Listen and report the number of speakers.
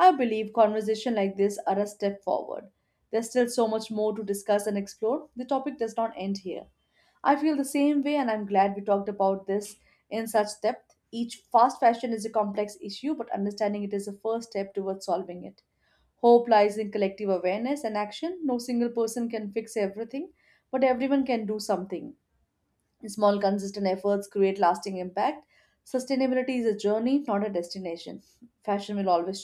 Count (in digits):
1